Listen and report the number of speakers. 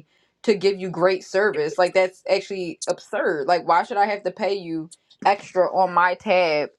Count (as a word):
one